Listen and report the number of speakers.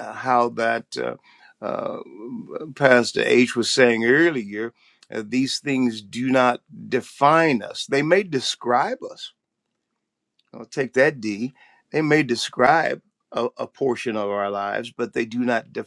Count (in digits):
1